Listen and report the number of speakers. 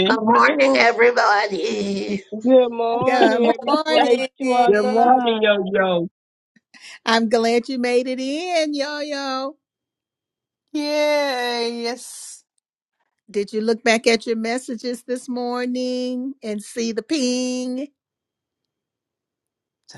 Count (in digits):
5